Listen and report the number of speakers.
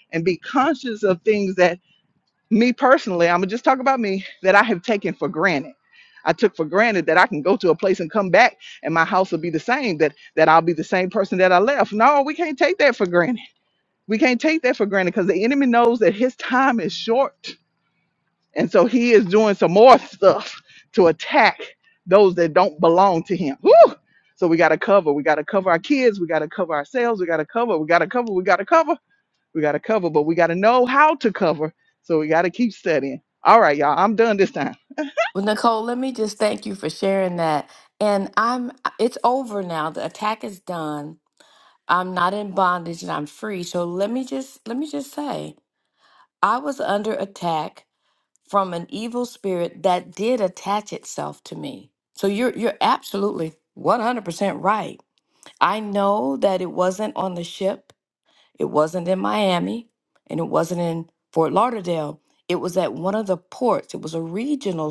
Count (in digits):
2